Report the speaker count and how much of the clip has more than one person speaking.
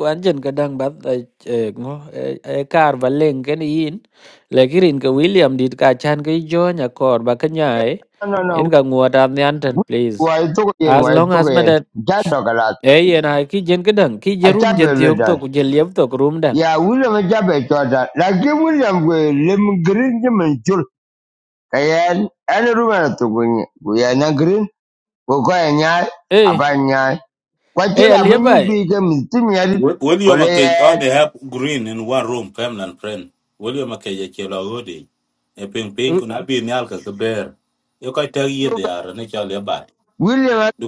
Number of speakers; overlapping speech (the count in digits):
3, about 10%